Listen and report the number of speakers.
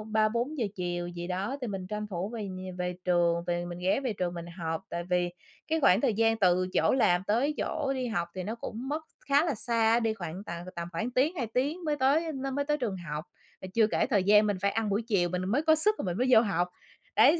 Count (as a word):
one